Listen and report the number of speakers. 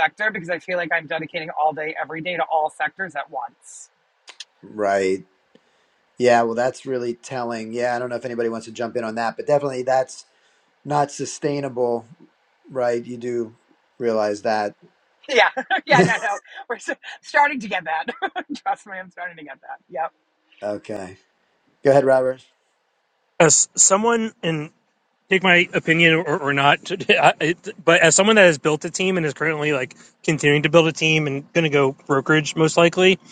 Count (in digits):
3